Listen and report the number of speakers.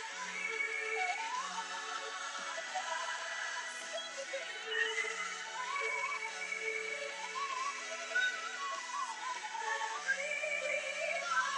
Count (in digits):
0